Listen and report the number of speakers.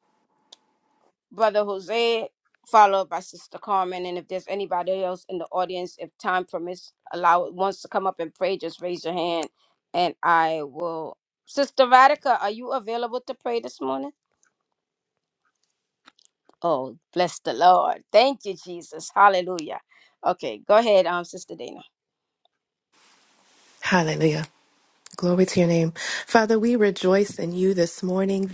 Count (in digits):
2